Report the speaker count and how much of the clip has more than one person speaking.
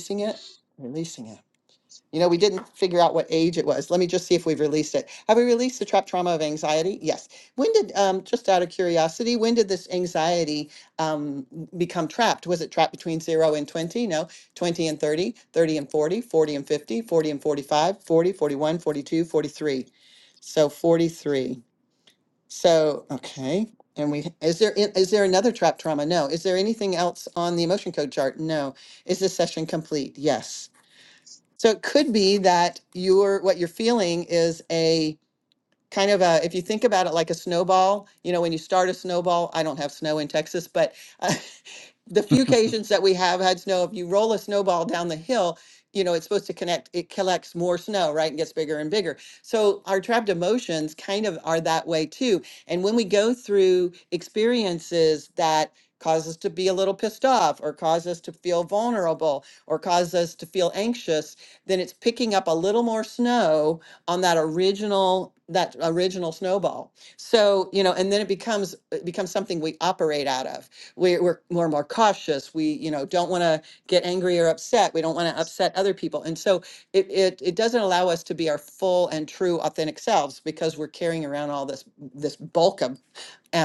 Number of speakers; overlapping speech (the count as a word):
one, no overlap